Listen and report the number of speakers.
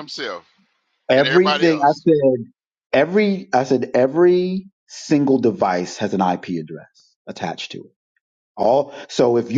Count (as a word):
two